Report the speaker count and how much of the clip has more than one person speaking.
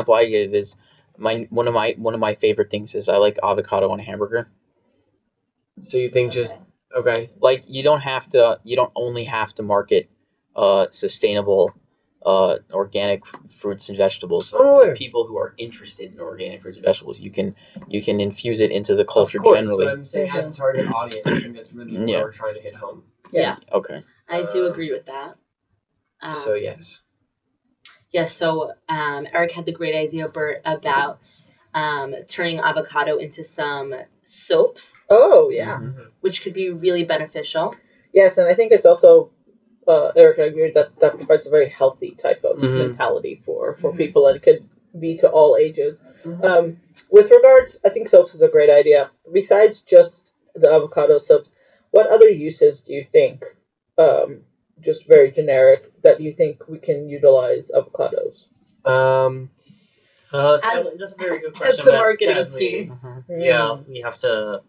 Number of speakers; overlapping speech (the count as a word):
five, about 8%